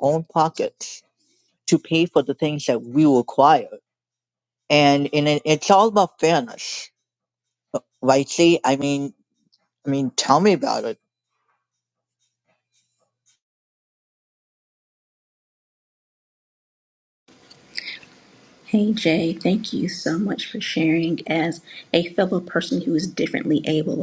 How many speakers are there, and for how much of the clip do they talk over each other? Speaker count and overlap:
two, no overlap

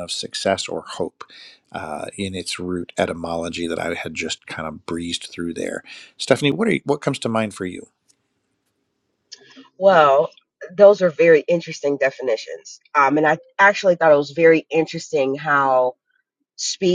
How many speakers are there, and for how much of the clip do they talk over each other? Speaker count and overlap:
two, no overlap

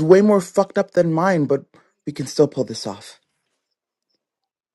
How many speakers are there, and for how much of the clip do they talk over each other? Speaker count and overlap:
one, no overlap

